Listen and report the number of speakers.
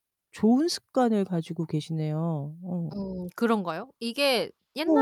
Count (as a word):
two